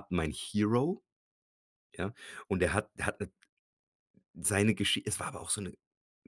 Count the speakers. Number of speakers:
one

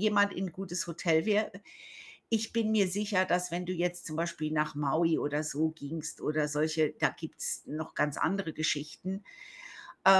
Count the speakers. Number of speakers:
one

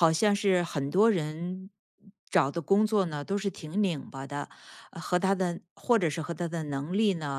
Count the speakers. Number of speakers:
one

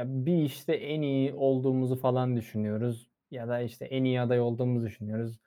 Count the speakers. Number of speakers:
one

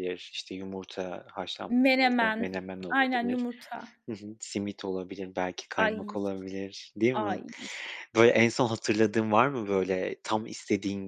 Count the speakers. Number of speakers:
two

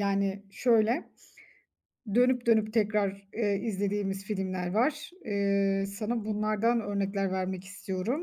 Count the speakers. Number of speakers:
one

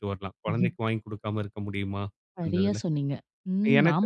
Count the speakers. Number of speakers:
two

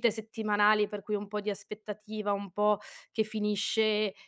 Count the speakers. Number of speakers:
one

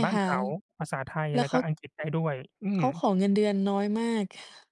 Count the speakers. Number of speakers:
two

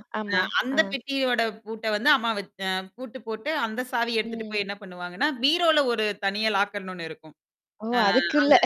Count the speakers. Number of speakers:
two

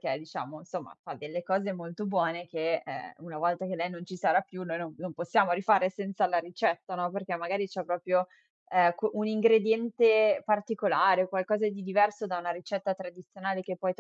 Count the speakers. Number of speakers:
one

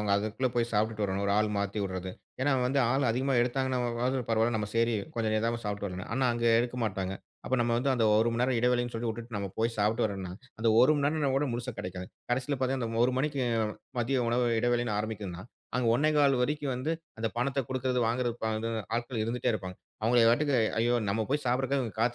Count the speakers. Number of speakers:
one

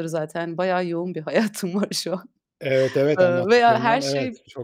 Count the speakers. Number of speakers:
two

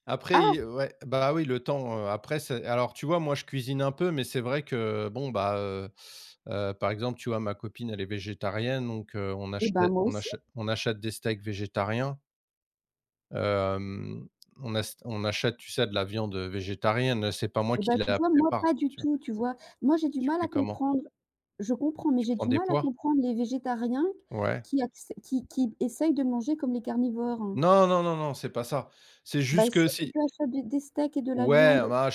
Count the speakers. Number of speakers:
two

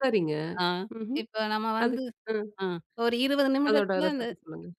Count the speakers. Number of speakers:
two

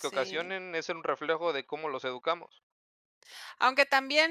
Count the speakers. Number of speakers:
two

